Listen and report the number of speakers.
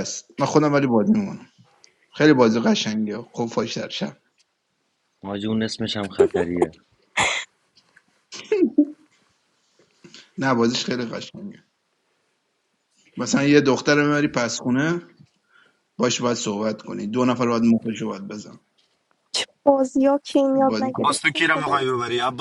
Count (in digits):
4